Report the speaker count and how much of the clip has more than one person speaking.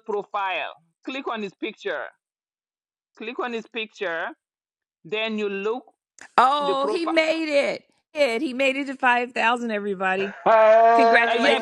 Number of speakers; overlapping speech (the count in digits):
3, about 11%